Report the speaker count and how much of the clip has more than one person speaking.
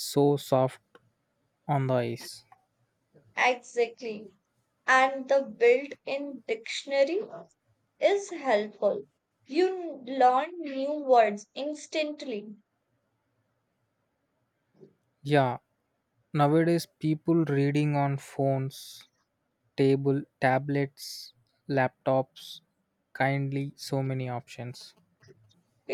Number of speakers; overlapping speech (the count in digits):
2, no overlap